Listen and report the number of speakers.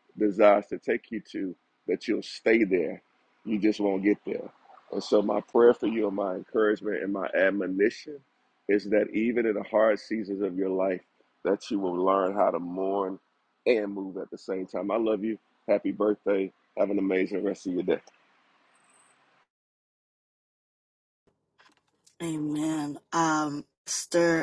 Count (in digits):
2